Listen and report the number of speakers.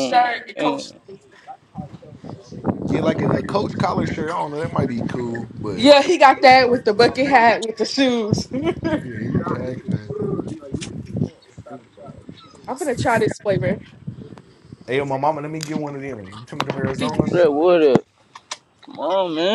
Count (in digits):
3